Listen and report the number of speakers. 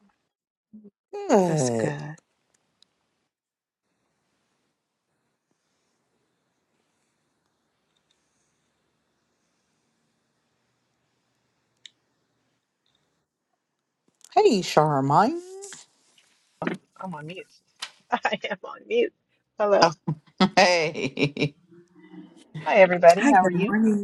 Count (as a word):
three